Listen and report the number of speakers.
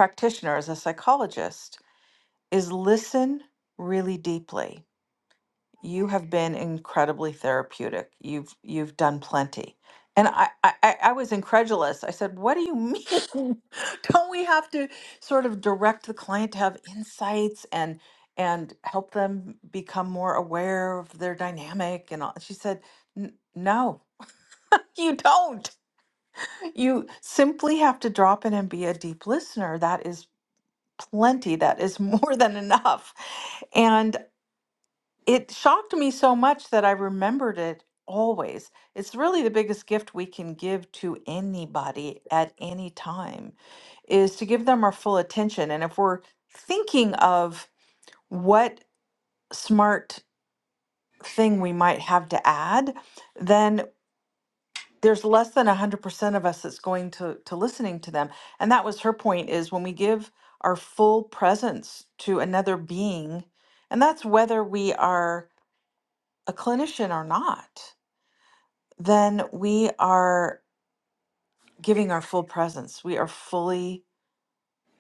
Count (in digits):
1